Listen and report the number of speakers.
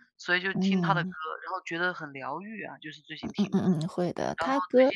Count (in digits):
2